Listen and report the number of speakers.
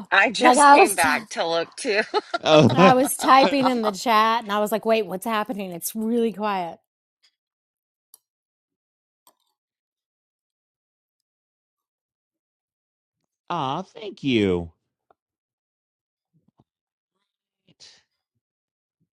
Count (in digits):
3